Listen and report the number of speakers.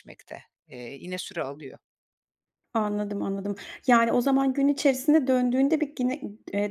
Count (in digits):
2